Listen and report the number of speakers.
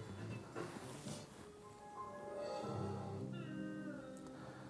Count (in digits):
0